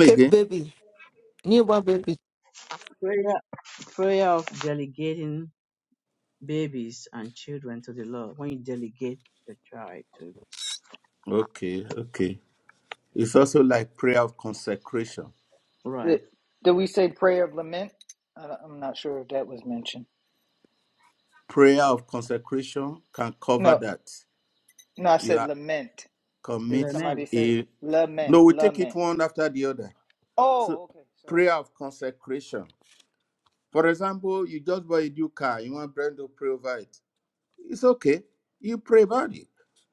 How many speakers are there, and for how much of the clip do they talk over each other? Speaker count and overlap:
4, about 7%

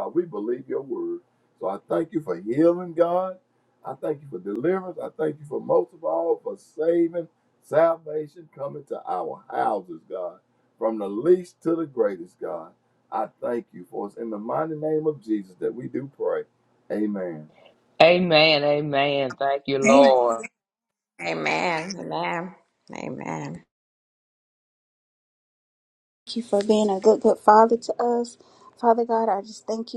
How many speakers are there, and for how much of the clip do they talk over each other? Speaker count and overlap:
4, about 1%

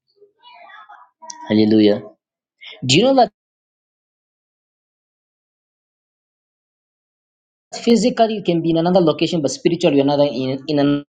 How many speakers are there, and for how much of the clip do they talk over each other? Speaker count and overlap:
1, no overlap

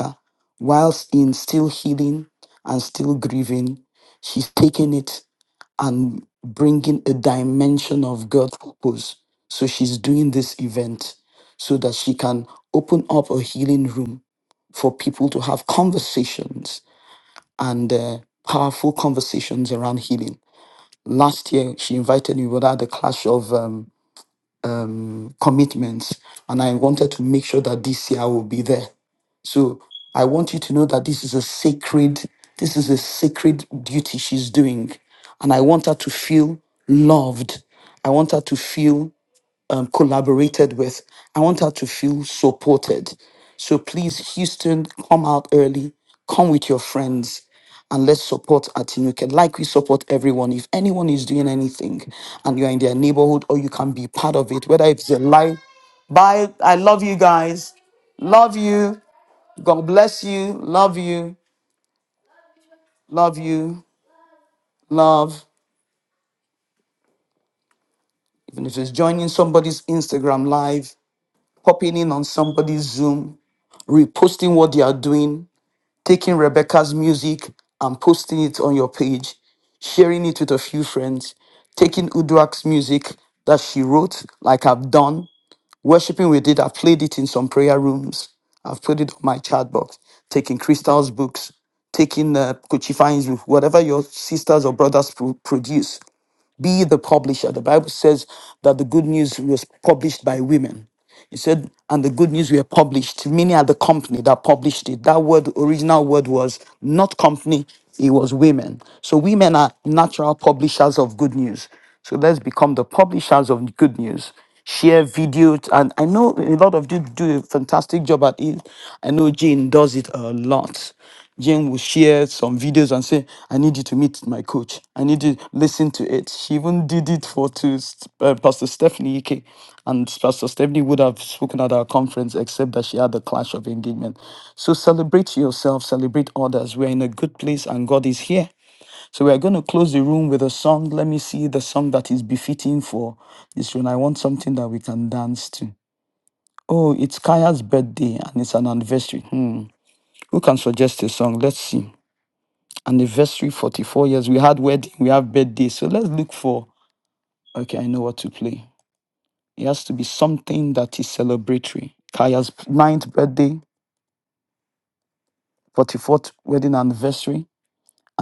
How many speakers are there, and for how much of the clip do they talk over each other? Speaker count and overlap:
1, no overlap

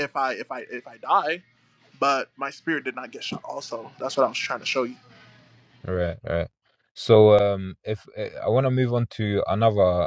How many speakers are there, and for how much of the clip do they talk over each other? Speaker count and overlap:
2, no overlap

